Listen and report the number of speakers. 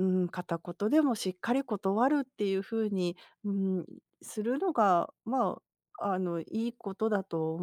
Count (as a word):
one